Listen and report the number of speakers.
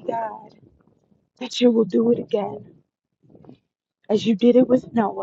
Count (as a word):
one